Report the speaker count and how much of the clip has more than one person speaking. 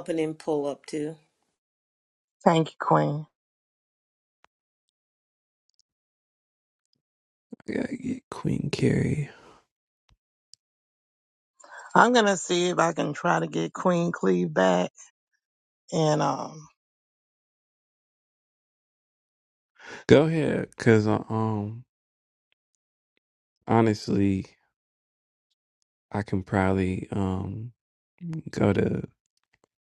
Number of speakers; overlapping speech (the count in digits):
3, no overlap